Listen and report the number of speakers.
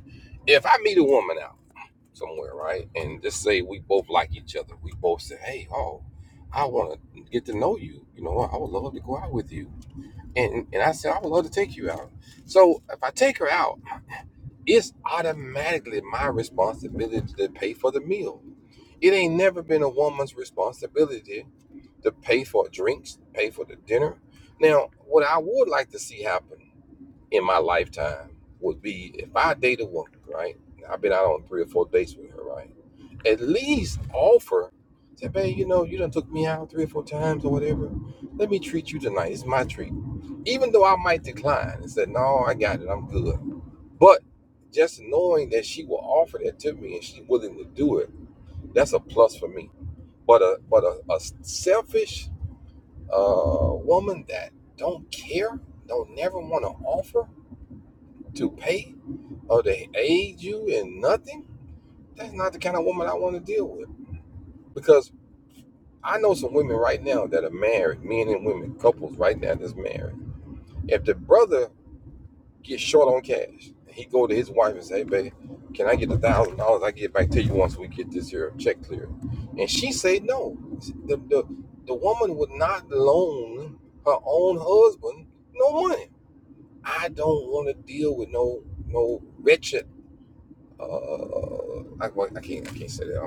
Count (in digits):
1